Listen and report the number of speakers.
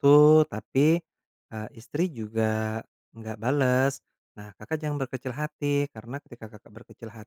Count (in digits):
1